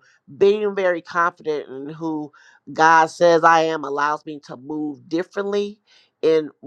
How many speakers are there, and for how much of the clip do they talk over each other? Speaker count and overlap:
1, no overlap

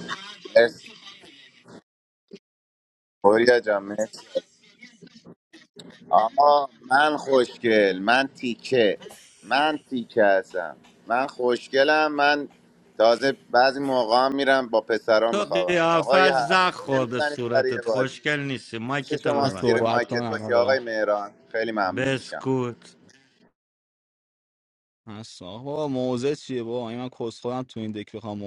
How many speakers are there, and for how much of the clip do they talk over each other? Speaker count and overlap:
3, about 17%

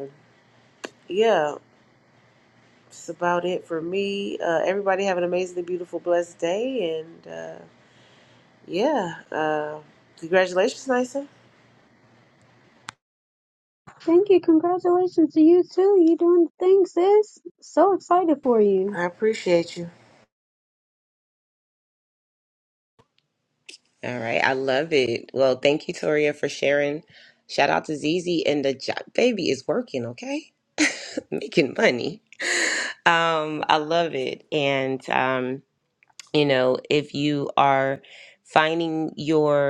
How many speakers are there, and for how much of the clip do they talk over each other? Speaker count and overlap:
3, under 1%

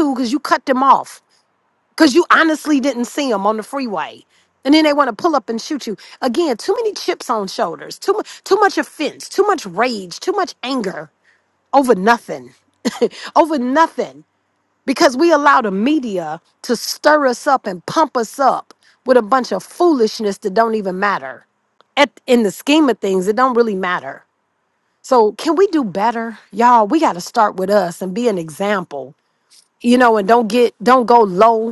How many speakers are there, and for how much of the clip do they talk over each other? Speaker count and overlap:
1, no overlap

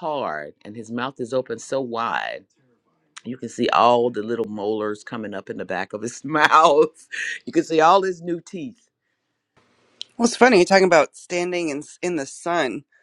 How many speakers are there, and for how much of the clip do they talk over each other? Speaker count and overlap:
2, no overlap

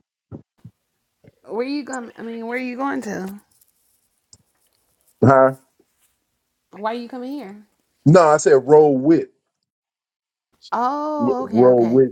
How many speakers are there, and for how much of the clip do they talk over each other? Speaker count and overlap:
2, about 7%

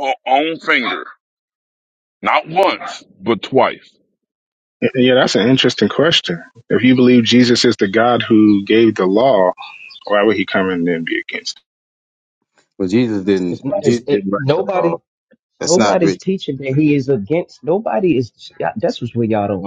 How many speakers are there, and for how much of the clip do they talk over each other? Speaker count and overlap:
4, about 10%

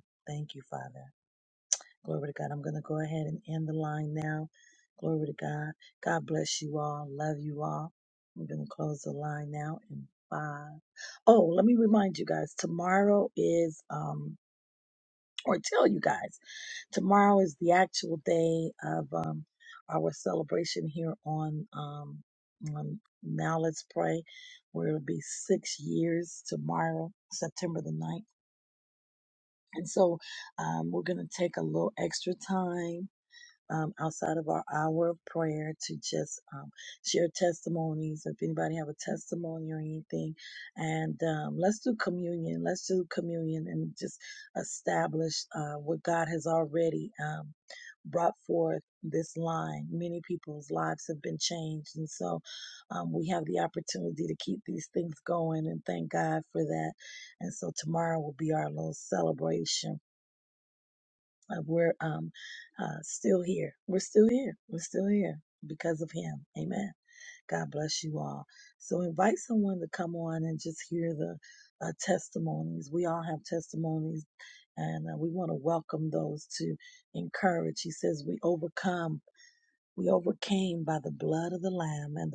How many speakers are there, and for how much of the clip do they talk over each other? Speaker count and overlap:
1, no overlap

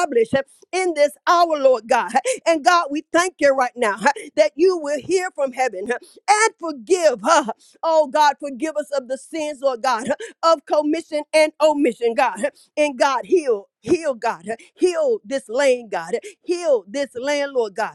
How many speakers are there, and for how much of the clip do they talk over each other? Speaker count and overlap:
1, no overlap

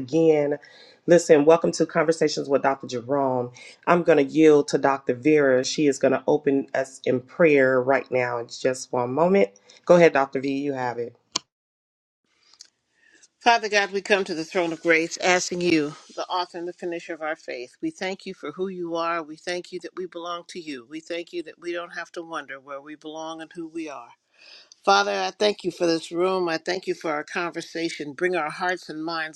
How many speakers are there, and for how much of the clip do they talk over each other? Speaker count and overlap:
2, no overlap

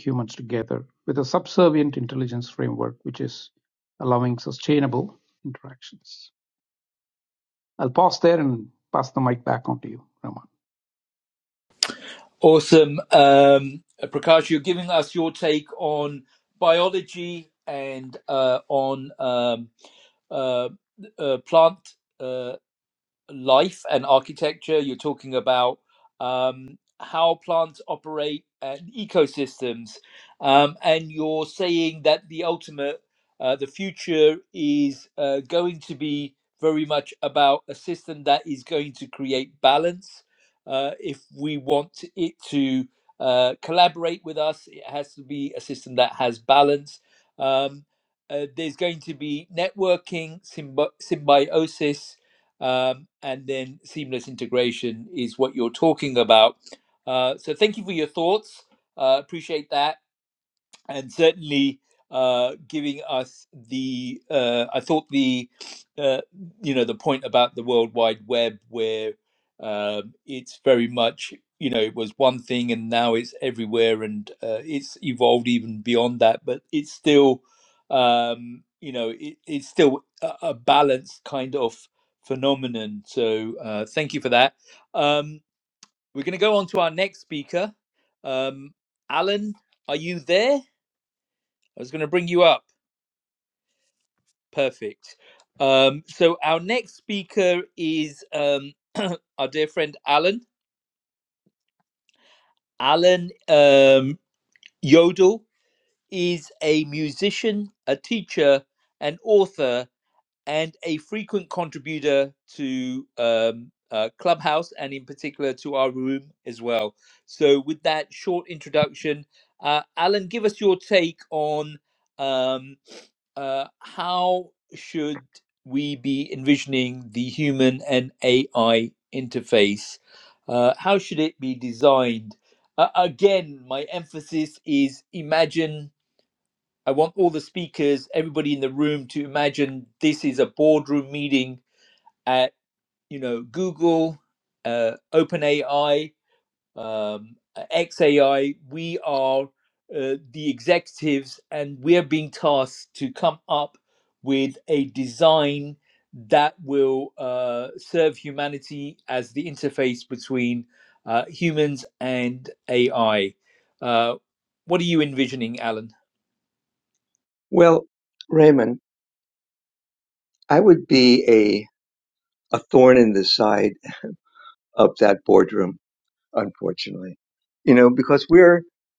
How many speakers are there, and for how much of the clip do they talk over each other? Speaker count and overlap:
3, no overlap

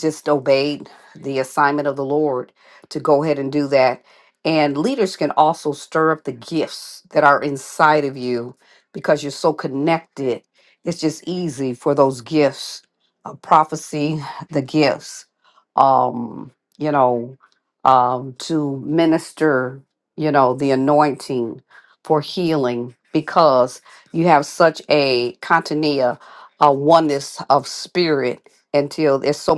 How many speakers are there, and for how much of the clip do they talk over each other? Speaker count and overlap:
1, no overlap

